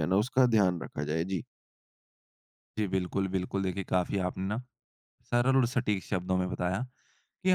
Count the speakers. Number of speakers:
2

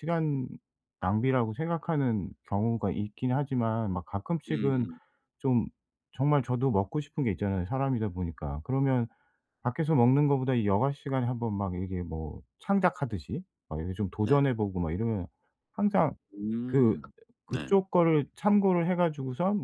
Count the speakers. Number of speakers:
2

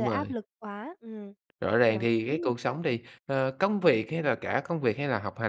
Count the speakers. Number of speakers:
2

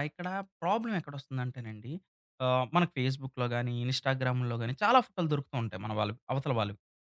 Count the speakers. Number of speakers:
1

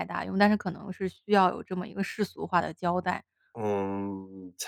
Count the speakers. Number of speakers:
2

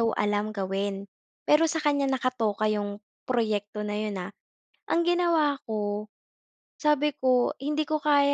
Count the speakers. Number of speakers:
1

